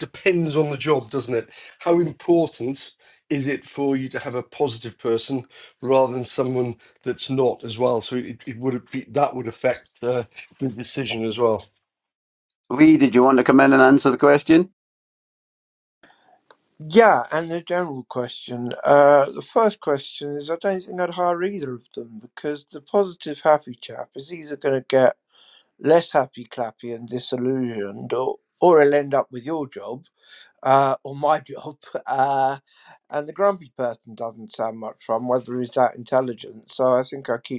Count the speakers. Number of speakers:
3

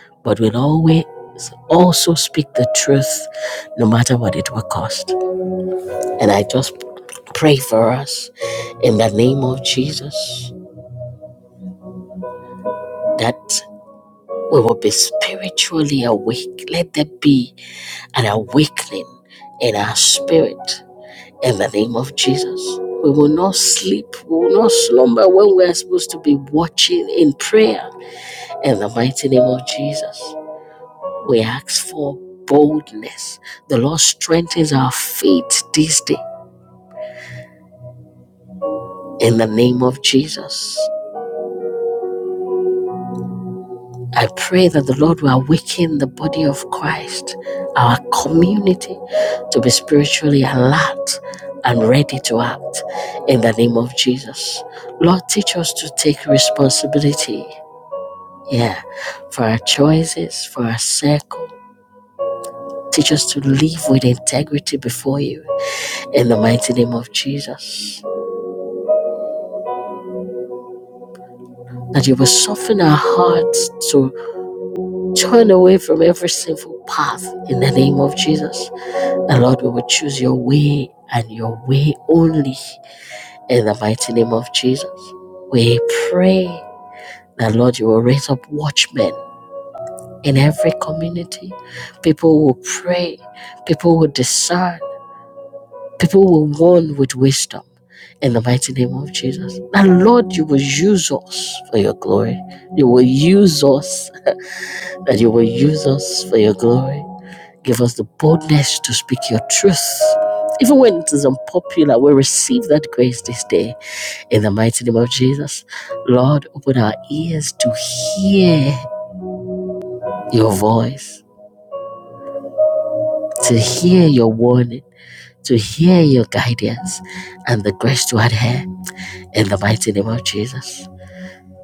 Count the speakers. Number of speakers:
1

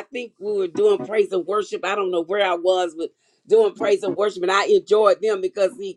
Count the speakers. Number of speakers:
1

